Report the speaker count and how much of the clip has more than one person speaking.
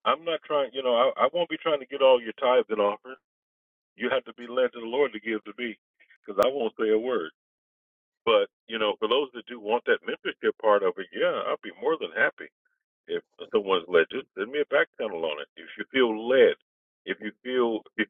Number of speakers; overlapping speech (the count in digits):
1, no overlap